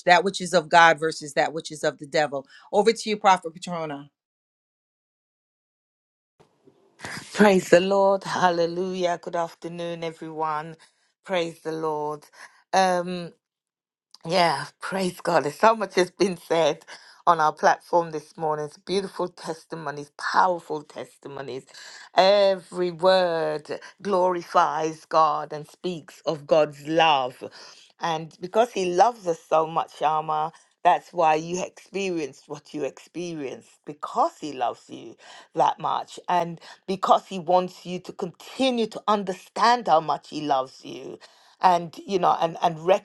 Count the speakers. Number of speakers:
2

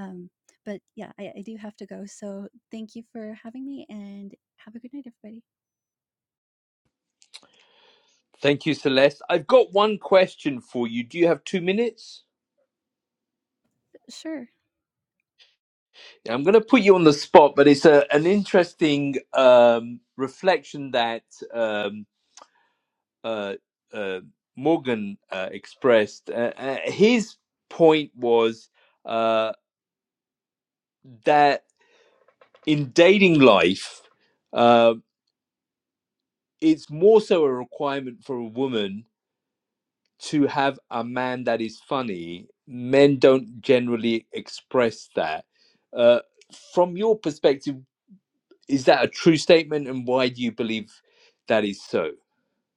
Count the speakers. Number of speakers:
2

